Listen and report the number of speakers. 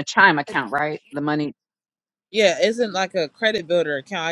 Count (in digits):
2